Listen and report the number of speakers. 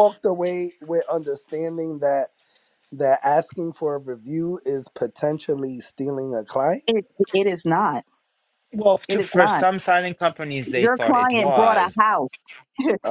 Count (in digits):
3